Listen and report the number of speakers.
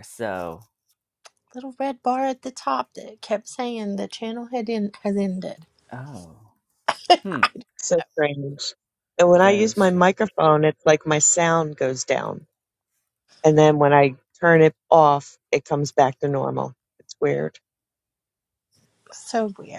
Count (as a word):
three